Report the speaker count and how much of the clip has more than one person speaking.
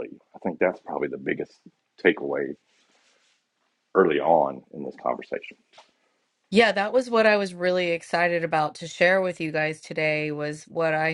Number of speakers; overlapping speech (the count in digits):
2, no overlap